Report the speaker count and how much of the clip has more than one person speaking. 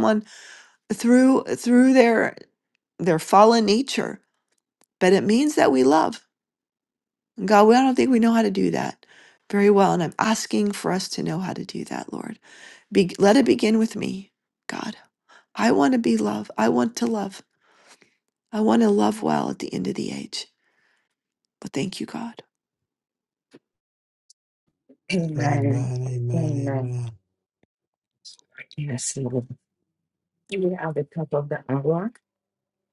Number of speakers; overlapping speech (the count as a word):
three, about 3%